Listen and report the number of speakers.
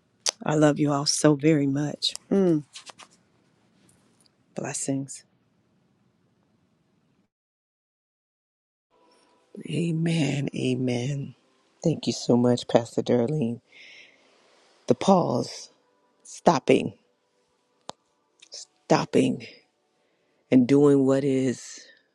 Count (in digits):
2